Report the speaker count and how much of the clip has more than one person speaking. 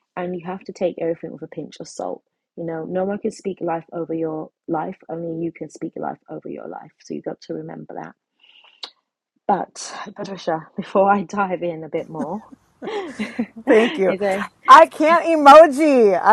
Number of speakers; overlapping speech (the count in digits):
2, under 1%